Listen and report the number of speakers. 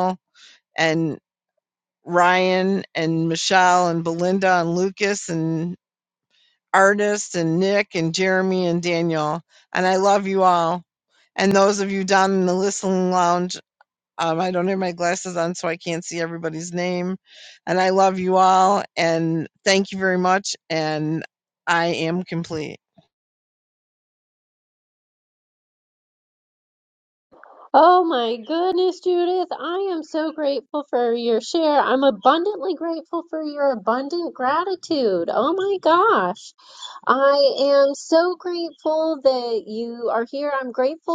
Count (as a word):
two